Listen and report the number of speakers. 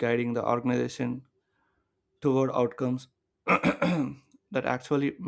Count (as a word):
one